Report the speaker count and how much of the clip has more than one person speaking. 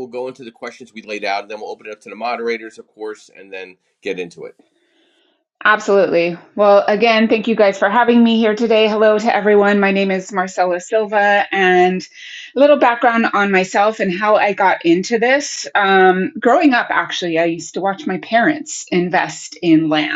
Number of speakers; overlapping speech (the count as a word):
two, no overlap